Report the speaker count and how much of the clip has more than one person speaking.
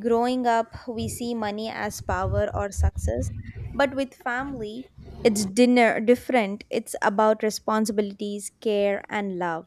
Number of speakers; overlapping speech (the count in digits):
1, no overlap